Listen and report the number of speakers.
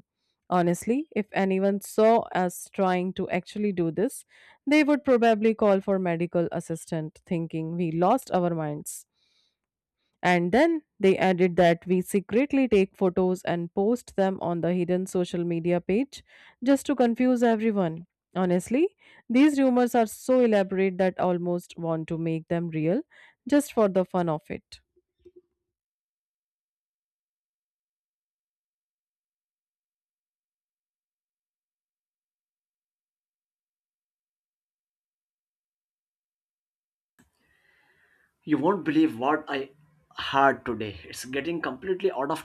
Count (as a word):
two